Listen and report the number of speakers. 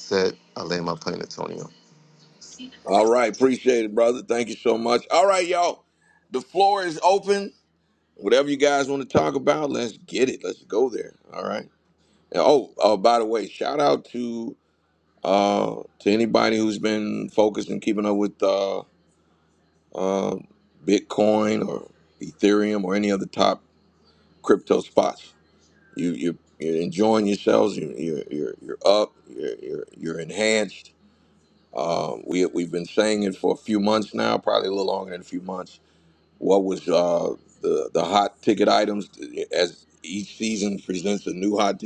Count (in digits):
2